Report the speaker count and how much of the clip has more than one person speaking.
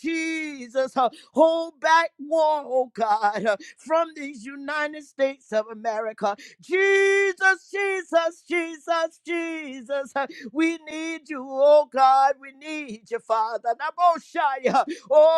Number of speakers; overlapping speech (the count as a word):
one, no overlap